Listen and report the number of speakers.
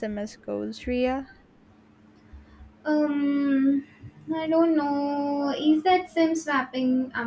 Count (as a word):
two